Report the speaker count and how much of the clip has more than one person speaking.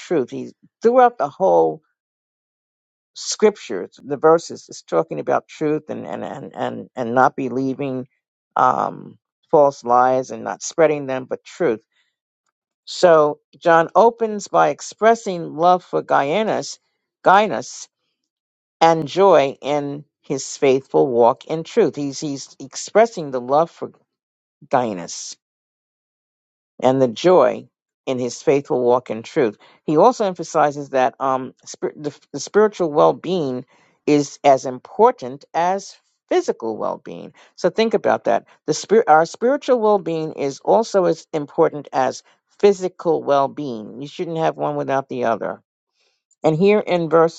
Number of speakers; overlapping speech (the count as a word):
one, no overlap